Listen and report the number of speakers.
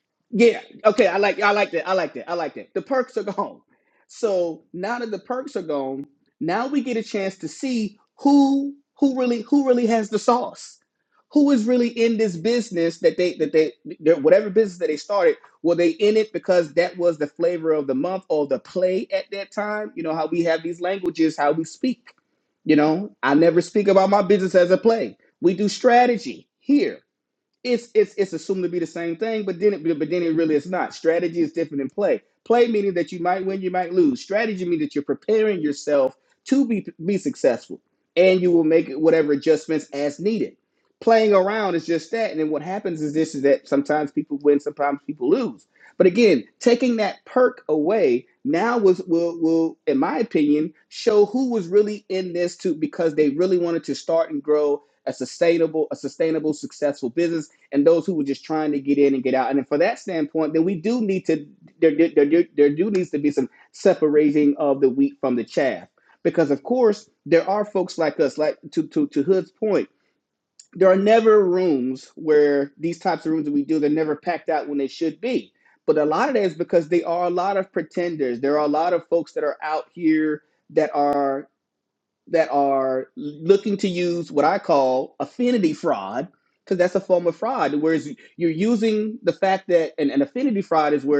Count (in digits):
1